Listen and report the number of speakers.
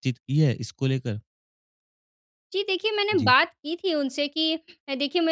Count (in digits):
2